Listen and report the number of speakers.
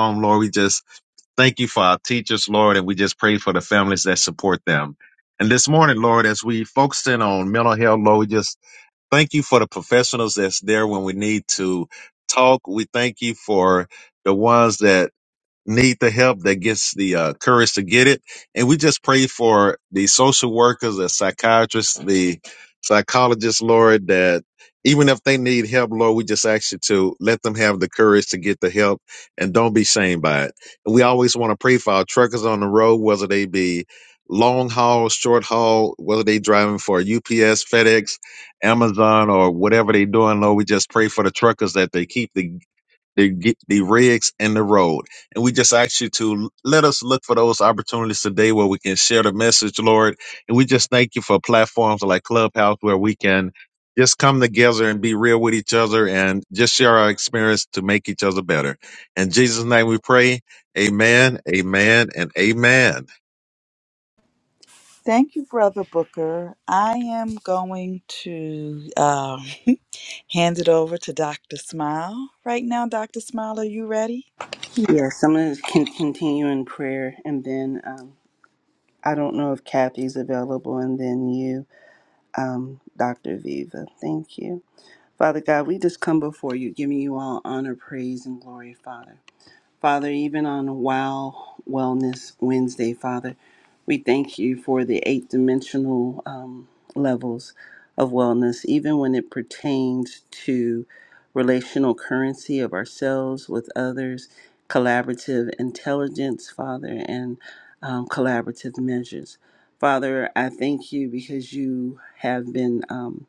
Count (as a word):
three